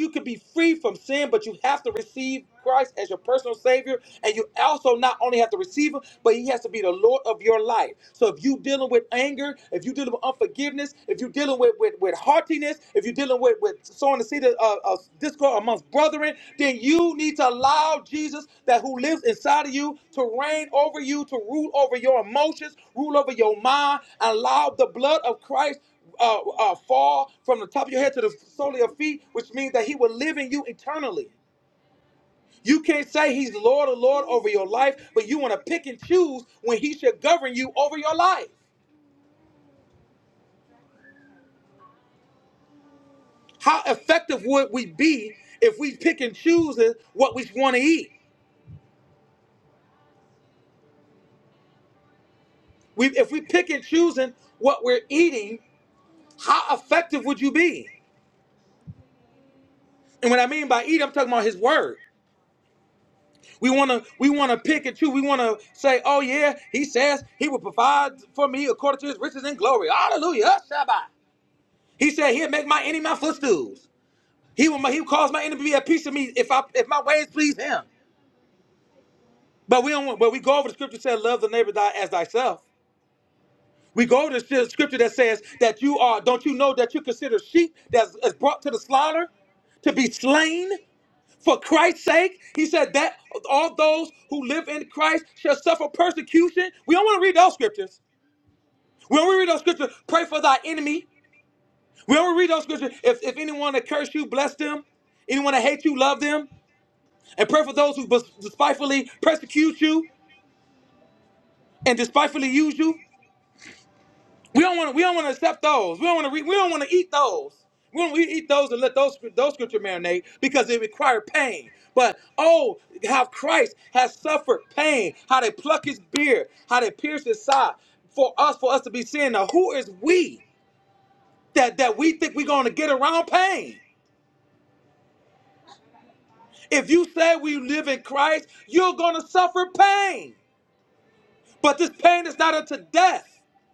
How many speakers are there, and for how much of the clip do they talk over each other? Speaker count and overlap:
1, no overlap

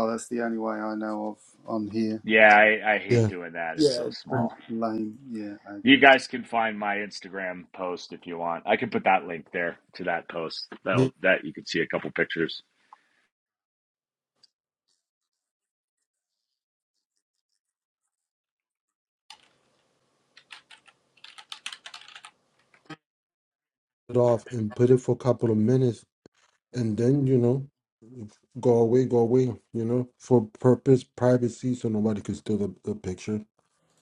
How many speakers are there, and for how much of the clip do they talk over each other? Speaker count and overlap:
3, about 4%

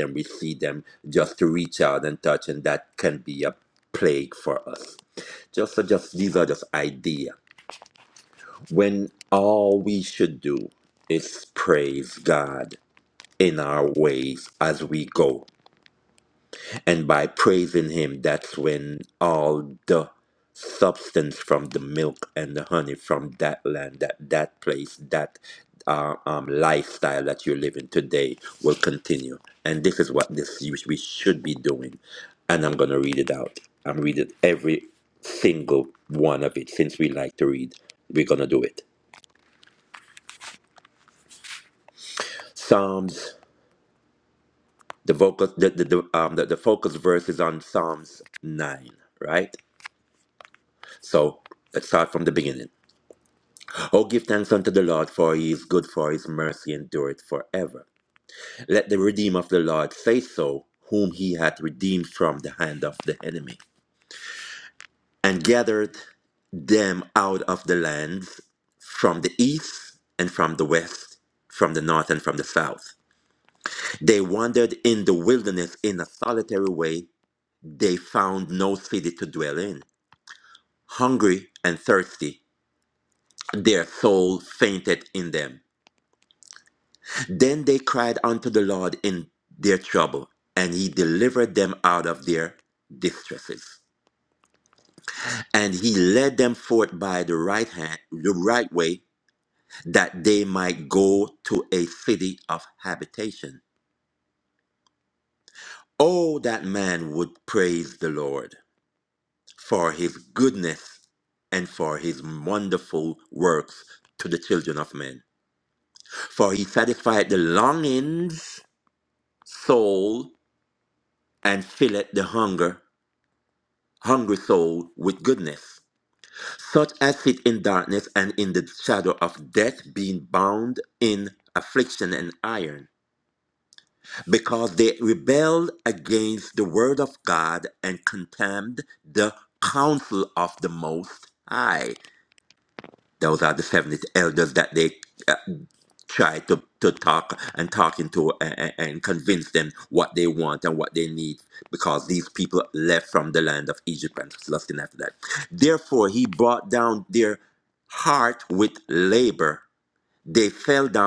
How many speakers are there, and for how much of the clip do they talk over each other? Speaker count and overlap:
1, no overlap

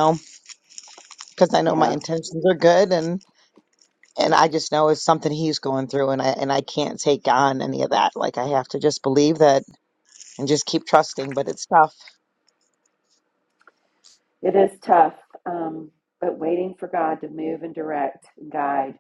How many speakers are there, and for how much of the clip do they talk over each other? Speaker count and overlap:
2, about 2%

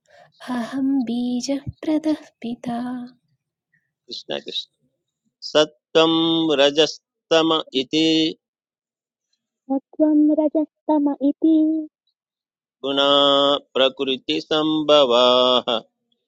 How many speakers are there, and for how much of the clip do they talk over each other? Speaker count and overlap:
3, no overlap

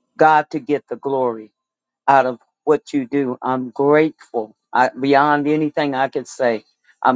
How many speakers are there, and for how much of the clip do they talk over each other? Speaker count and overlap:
1, no overlap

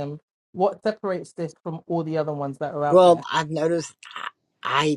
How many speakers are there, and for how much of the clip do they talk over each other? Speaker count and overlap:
2, about 7%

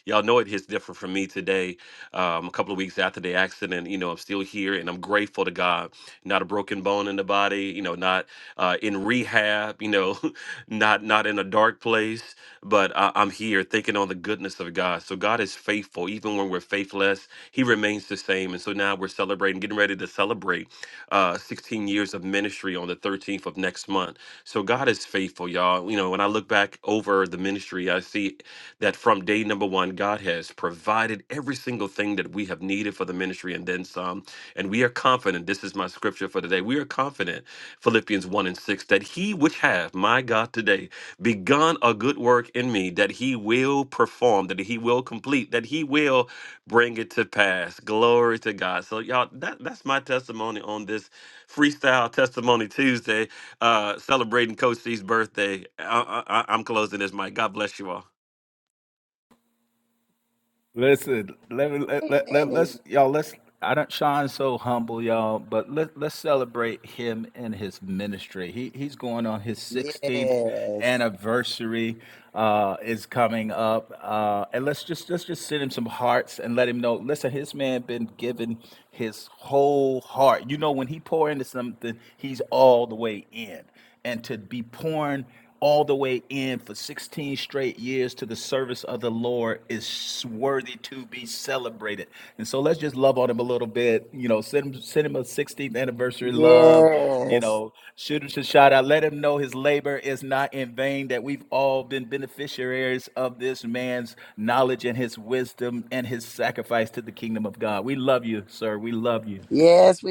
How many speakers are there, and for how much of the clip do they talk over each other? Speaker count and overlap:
3, about 2%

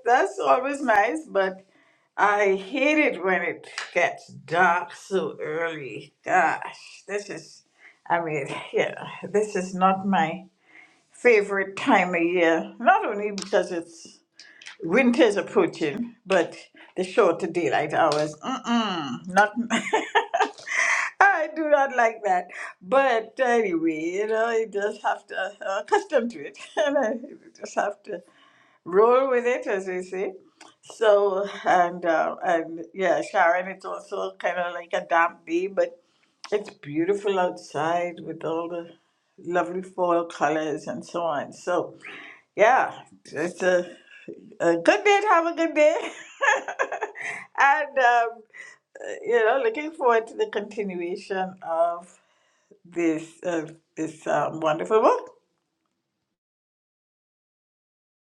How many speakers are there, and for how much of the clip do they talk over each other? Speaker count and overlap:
1, no overlap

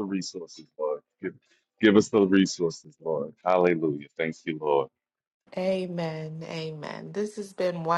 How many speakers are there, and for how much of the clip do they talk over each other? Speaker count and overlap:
2, no overlap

